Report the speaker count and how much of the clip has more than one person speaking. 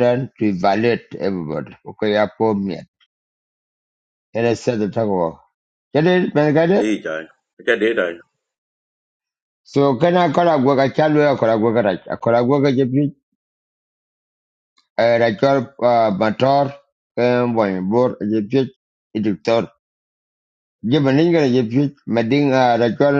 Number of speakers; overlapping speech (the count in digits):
2, about 1%